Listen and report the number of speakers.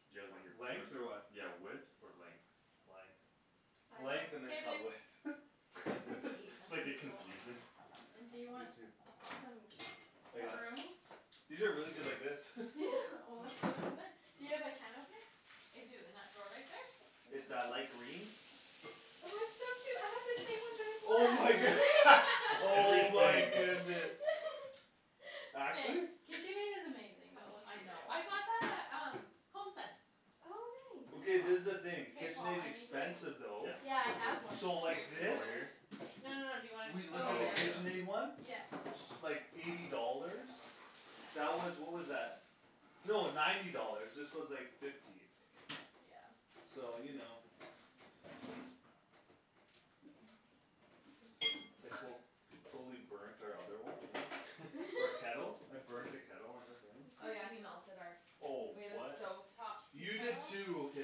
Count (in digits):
4